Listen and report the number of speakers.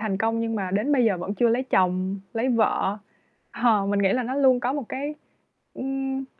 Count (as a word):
one